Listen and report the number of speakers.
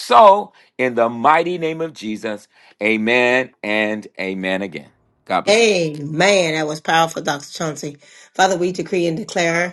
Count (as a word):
two